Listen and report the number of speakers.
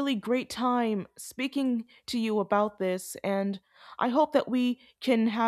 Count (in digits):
1